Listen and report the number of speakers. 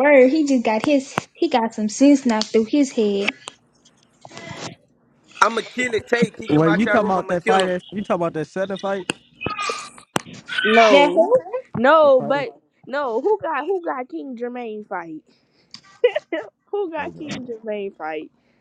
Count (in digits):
4